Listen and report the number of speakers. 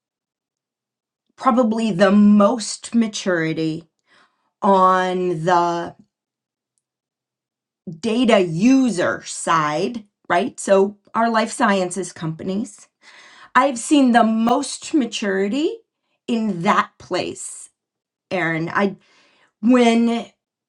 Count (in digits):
1